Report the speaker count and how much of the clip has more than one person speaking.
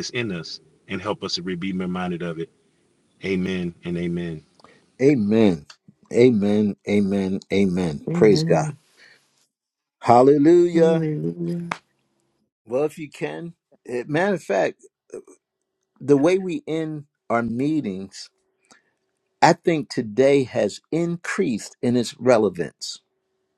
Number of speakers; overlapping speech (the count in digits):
3, about 4%